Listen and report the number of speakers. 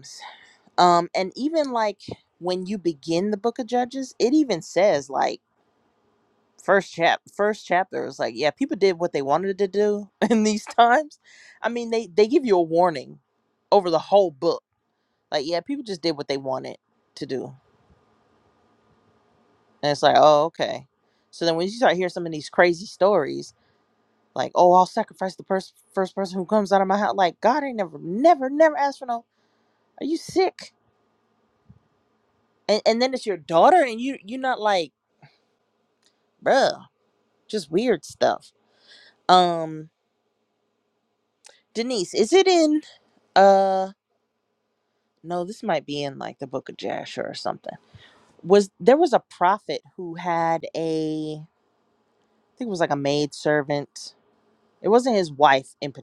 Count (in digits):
1